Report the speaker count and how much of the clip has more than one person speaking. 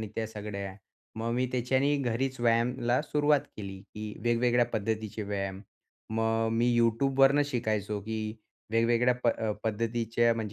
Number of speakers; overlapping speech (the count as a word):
one, no overlap